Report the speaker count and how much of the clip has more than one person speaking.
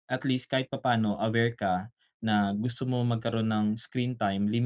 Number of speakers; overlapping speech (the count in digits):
1, no overlap